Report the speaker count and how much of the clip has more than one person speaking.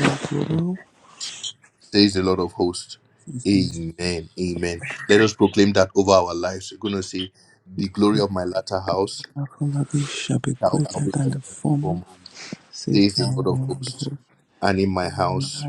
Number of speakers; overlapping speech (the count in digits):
2, about 21%